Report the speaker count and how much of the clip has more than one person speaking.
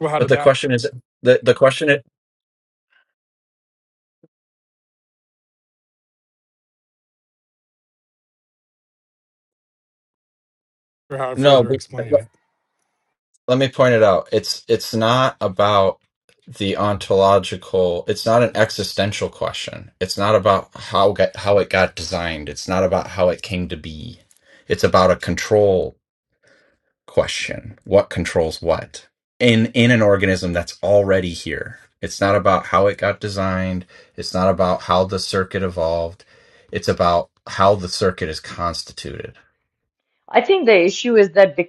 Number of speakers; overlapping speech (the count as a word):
three, about 2%